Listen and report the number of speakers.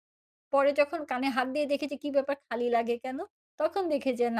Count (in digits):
1